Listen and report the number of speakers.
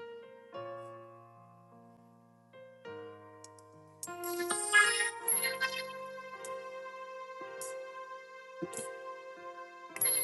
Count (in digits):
0